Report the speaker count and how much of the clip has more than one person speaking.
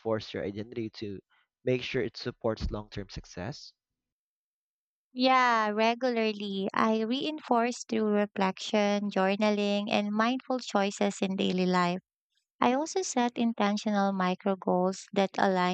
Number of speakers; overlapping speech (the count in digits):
2, no overlap